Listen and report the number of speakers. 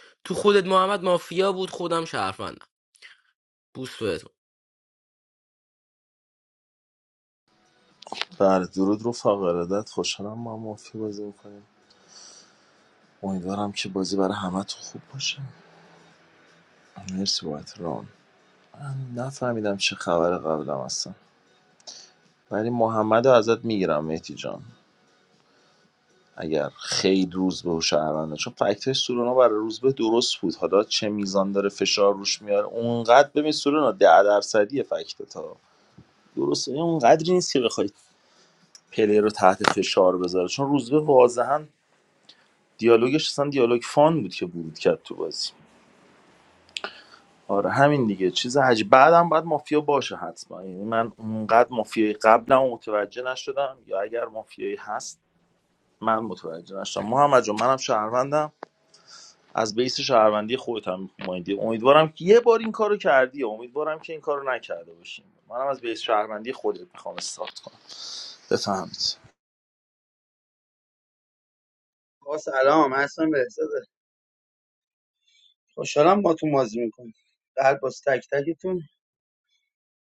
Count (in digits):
3